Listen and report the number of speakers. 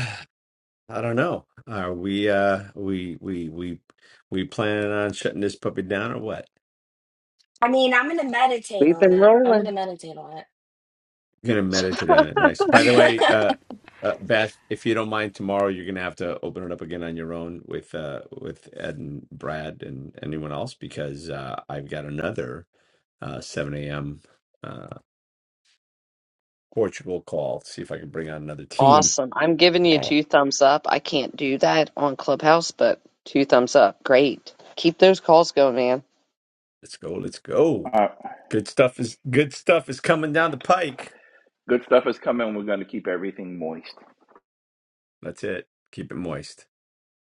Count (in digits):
4